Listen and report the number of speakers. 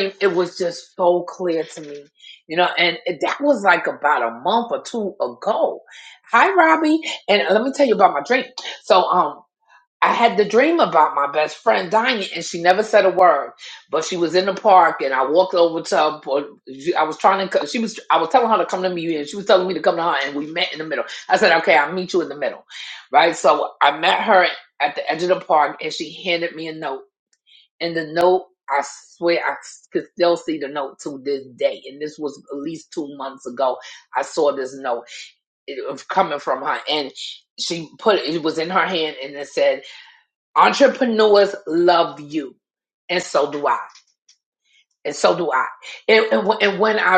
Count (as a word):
one